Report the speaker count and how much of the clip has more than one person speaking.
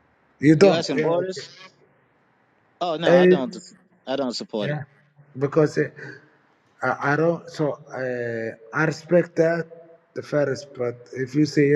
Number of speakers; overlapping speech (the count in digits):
2, about 11%